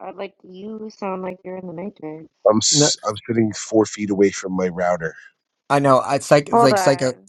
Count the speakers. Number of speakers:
3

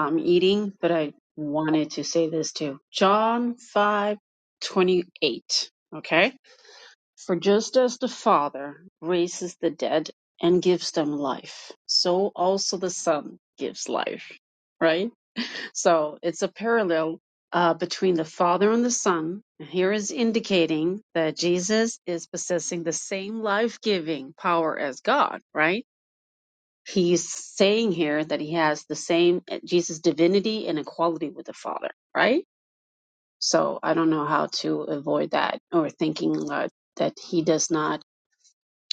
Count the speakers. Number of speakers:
1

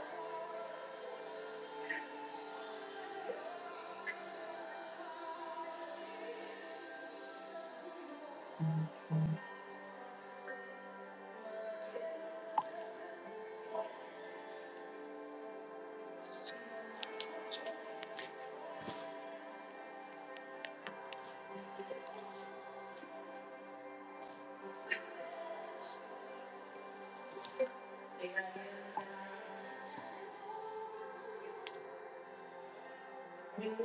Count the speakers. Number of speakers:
0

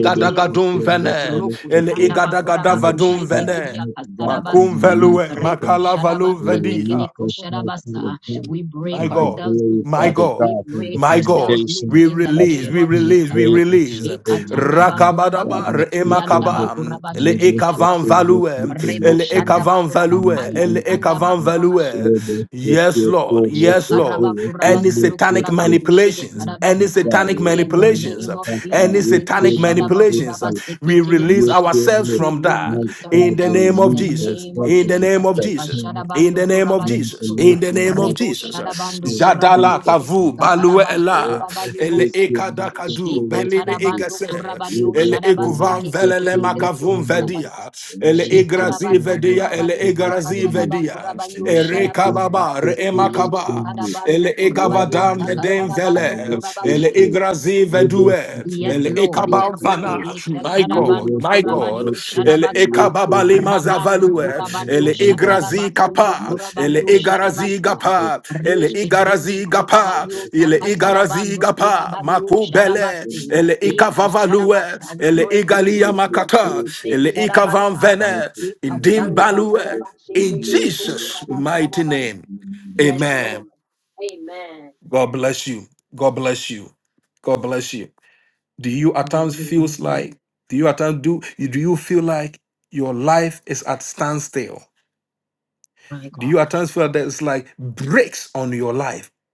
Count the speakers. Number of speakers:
3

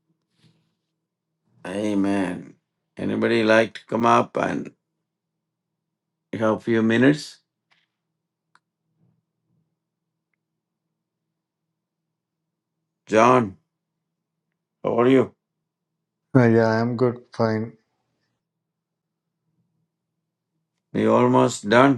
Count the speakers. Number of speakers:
2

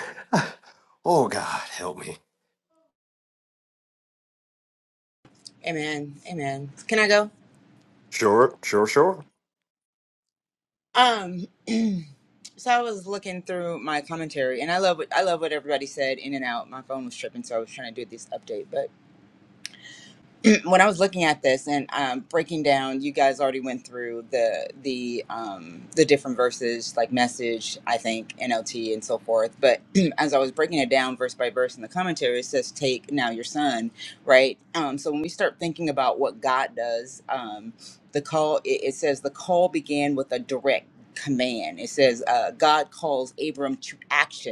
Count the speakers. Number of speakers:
2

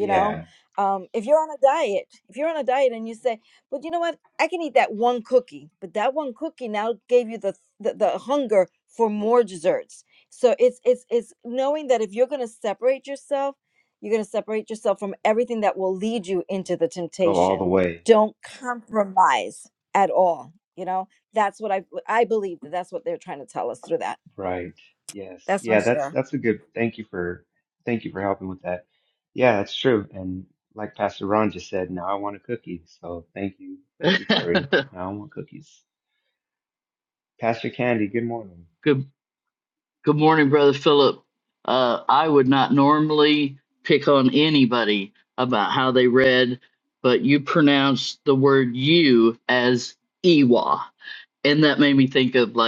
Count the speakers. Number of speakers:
3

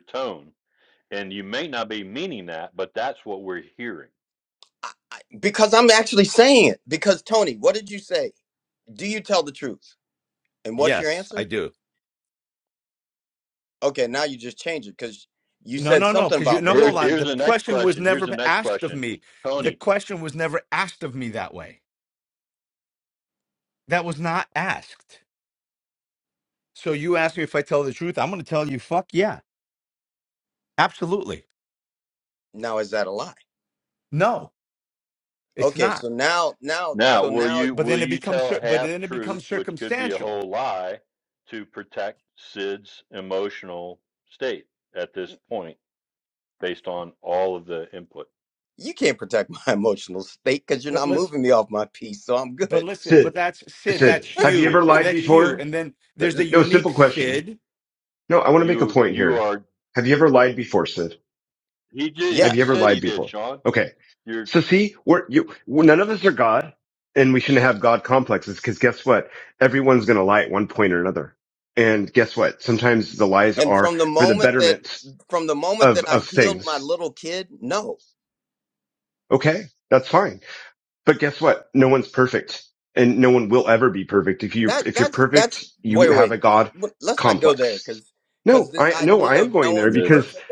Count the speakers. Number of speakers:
4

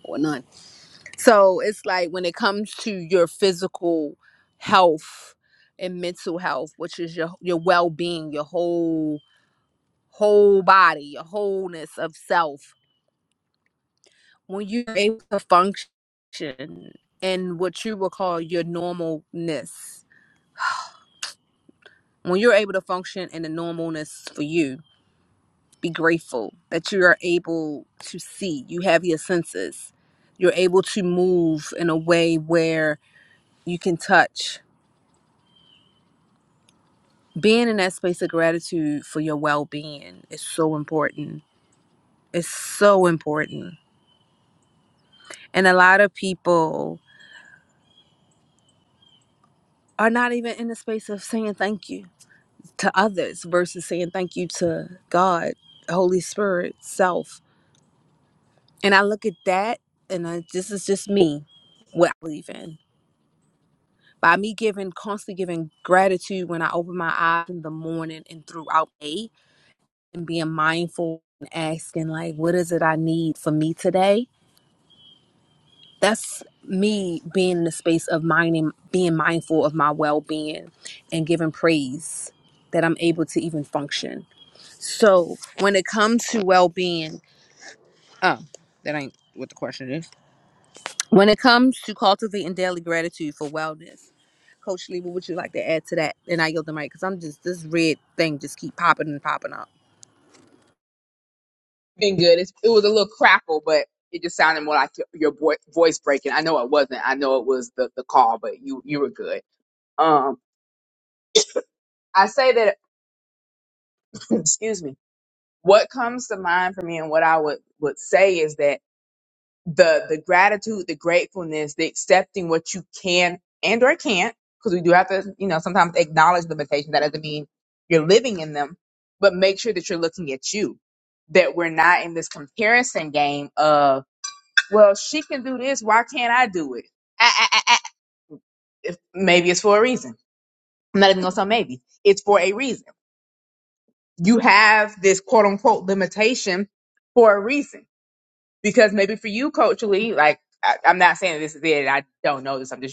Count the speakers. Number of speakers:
2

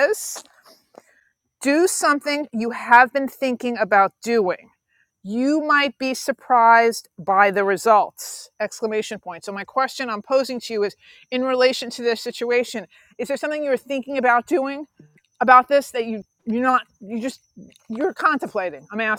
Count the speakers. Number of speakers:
1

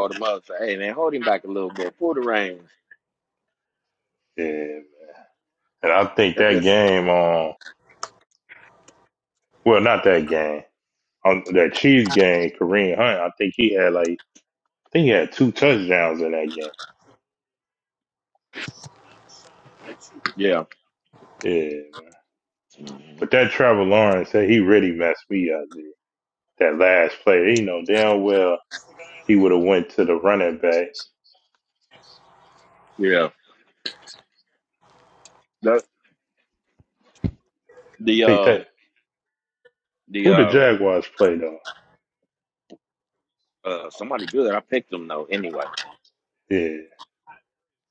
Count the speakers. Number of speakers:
2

